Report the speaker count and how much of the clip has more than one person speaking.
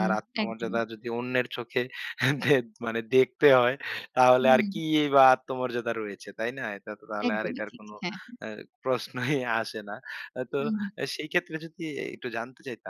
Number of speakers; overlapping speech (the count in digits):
2, about 12%